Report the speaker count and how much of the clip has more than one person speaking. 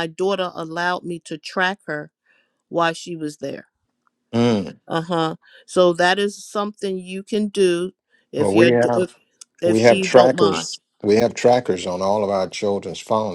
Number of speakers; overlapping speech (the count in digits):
2, about 12%